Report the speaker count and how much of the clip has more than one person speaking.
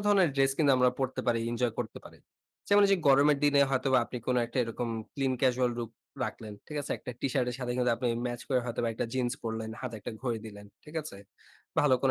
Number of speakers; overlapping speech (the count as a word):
one, no overlap